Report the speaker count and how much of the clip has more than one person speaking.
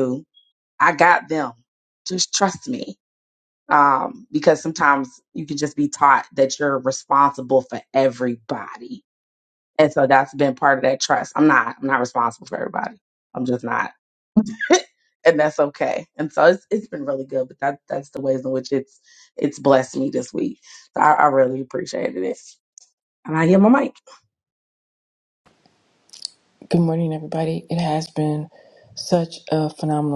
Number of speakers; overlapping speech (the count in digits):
2, no overlap